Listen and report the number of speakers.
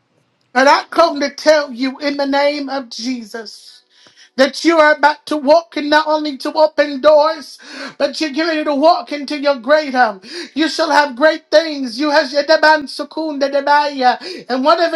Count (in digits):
1